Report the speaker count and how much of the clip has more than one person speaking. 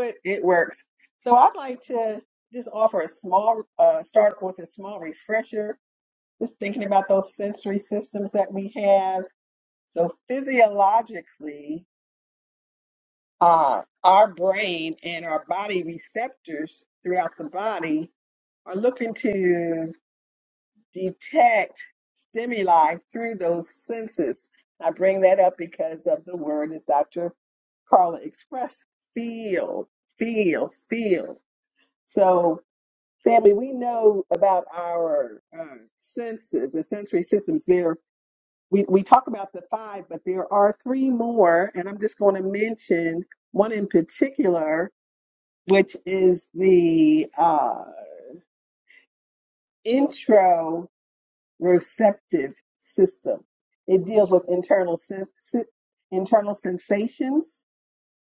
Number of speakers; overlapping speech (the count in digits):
1, no overlap